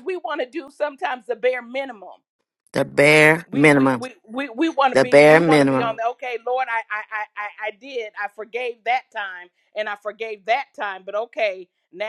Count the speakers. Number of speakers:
two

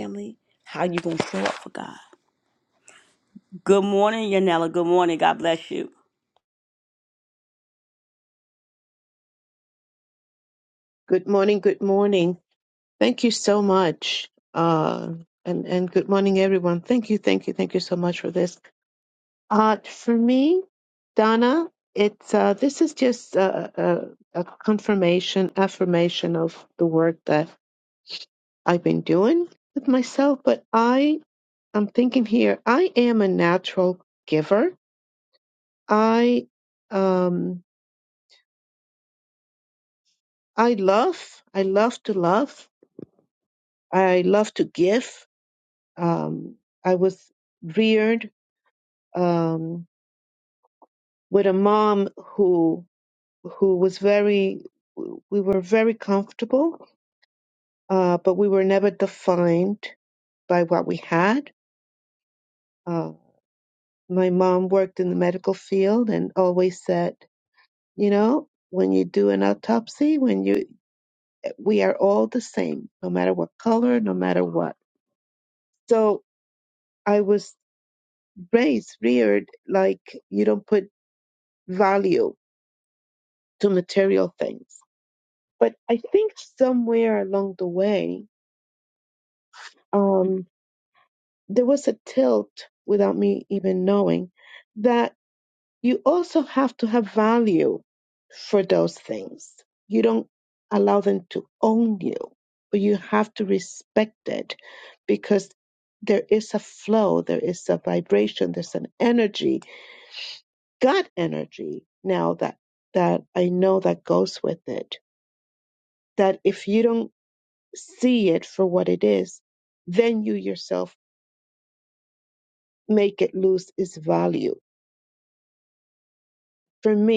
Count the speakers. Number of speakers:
two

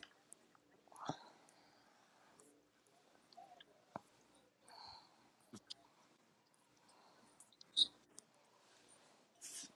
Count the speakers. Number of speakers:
zero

